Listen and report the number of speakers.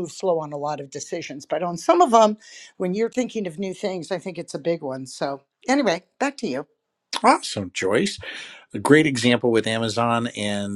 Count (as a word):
two